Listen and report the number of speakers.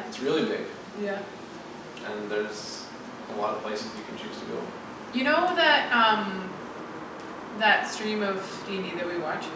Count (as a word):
two